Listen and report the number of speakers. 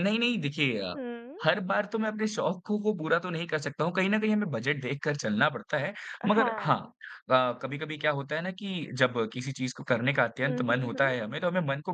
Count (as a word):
two